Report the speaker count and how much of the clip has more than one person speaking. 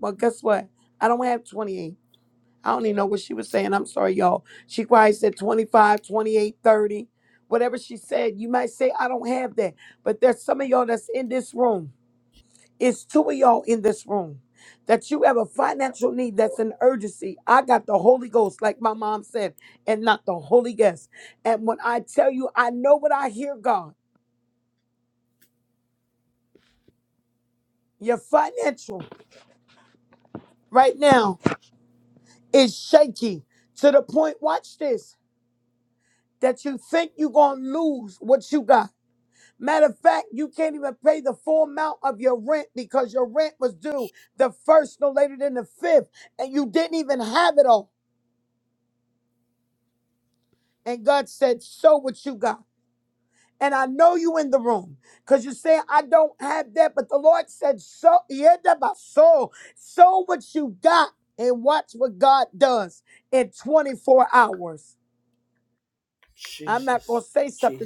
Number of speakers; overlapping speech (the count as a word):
one, no overlap